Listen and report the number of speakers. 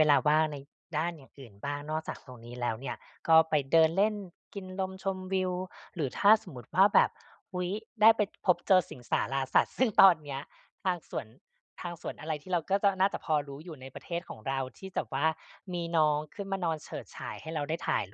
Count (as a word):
one